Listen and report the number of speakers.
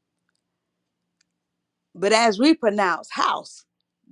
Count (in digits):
1